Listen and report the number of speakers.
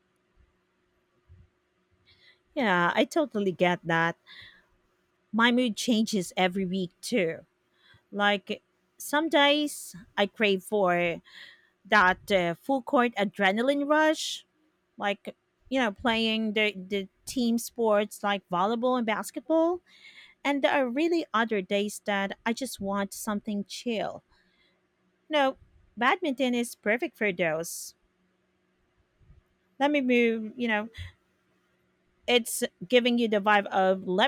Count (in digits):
1